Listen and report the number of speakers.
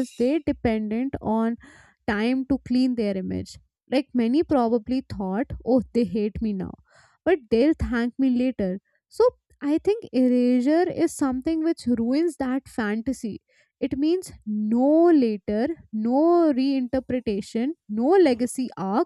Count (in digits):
1